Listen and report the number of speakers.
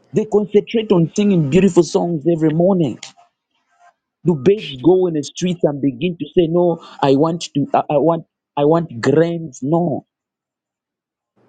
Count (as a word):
one